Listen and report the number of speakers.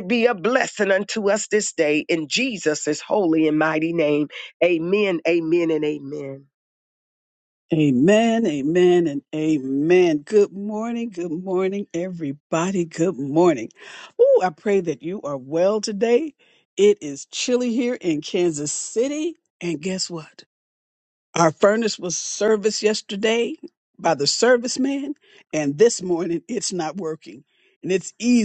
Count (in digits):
2